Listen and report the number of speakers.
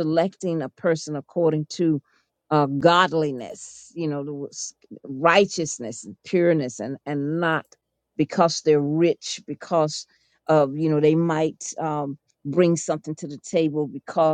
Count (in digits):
1